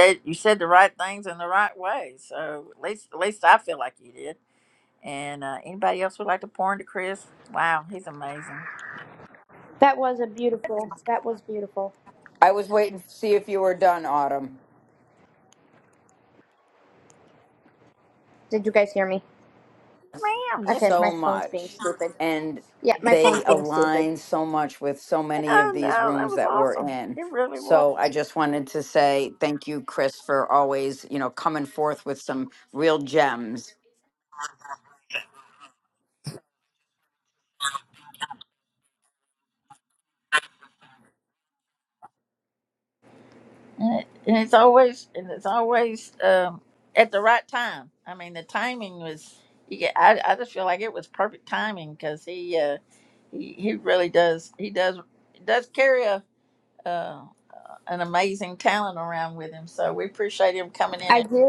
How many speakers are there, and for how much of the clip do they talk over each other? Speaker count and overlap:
three, about 7%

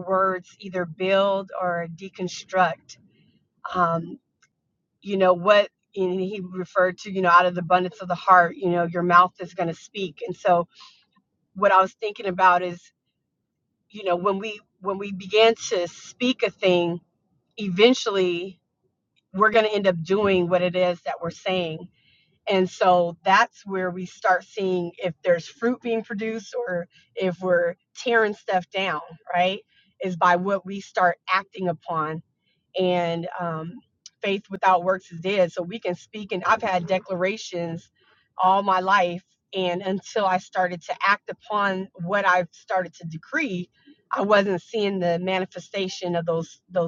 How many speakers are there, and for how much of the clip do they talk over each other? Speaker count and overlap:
one, no overlap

